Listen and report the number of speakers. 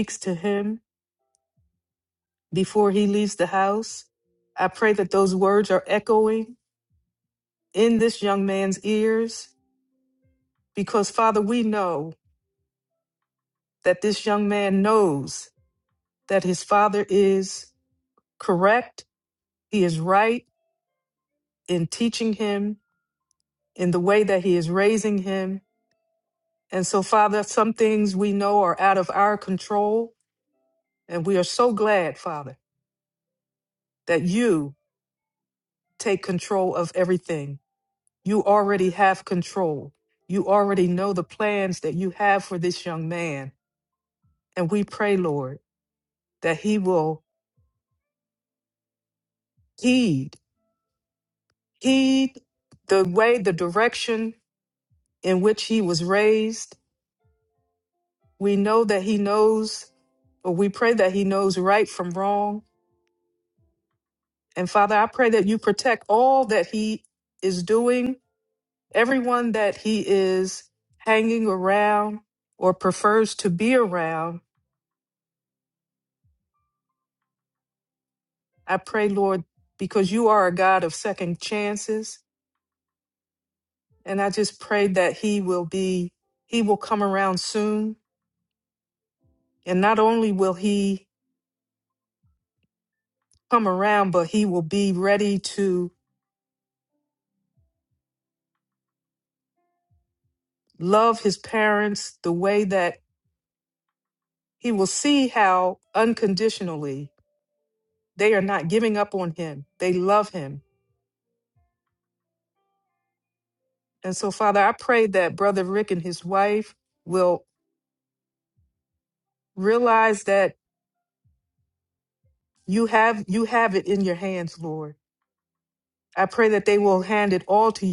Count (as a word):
one